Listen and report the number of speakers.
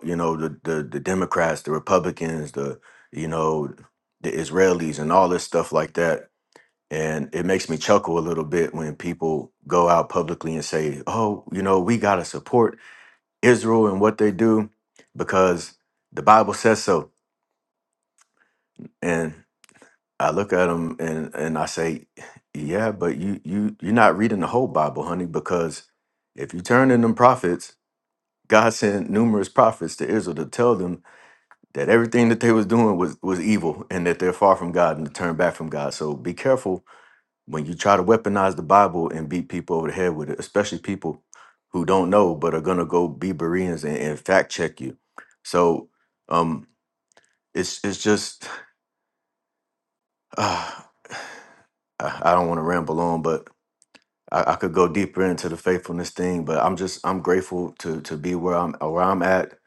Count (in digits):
1